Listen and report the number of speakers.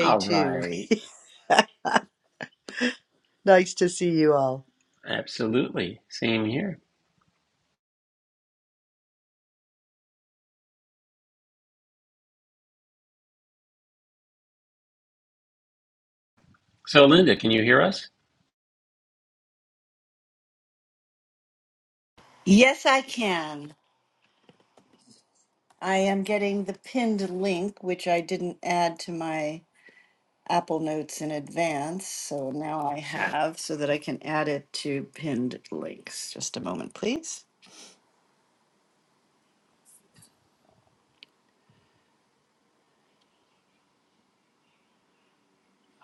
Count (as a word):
three